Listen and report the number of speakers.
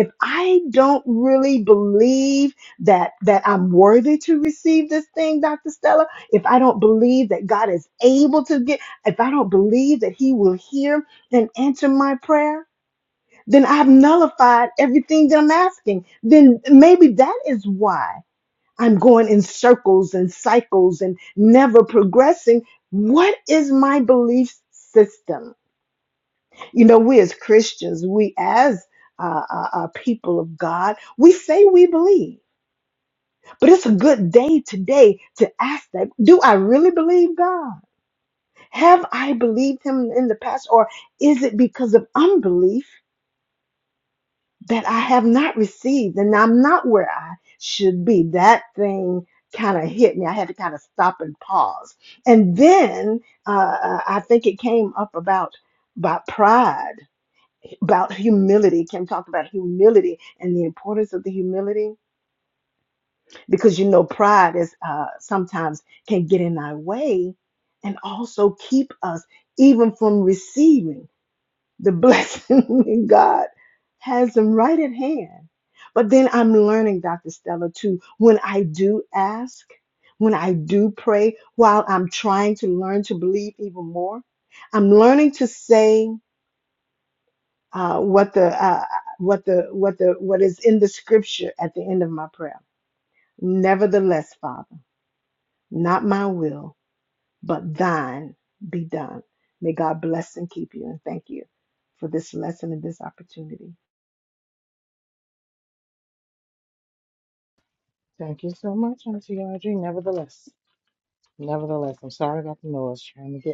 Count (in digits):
2